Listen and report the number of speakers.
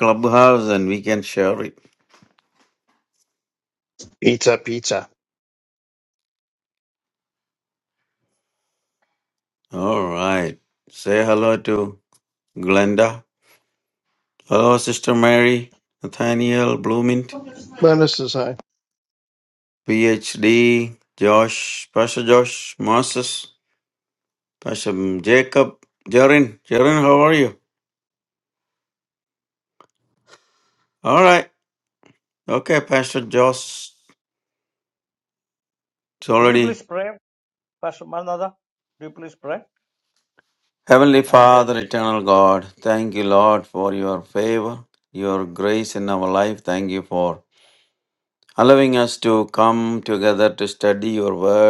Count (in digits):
3